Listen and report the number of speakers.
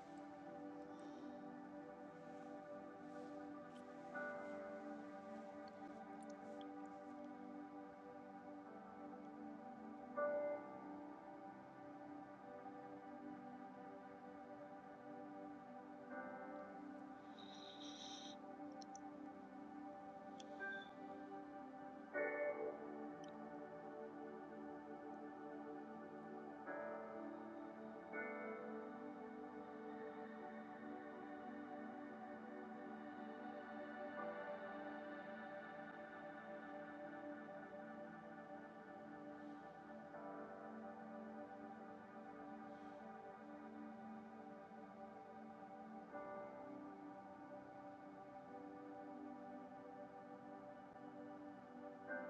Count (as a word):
zero